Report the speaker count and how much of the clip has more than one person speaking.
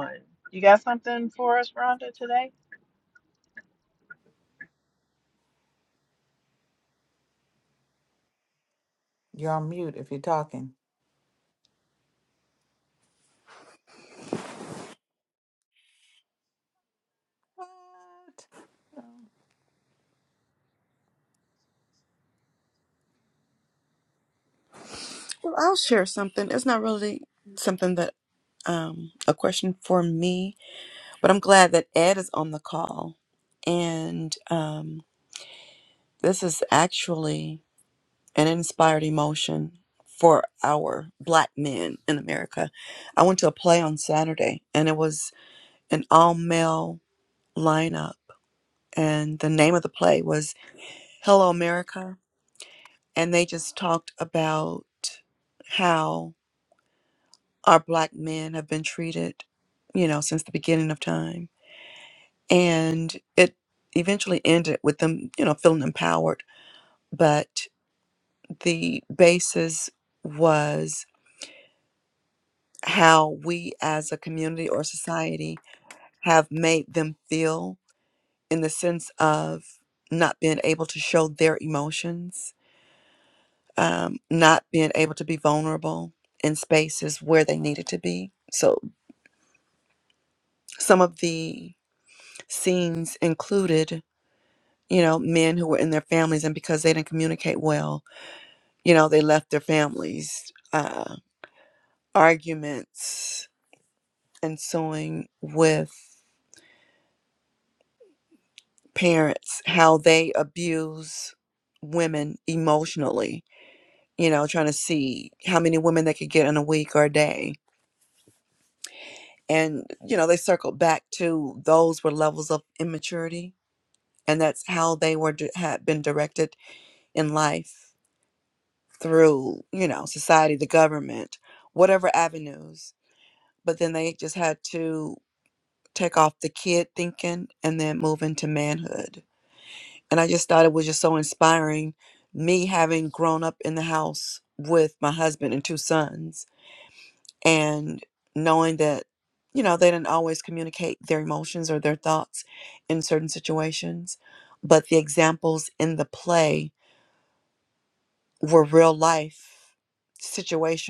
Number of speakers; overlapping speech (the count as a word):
three, no overlap